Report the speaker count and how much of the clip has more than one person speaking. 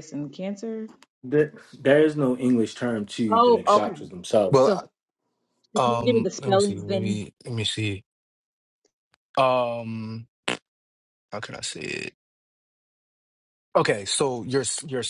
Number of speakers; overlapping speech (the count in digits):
3, about 16%